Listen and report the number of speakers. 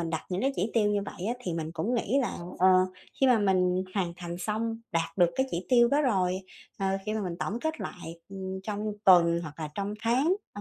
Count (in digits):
1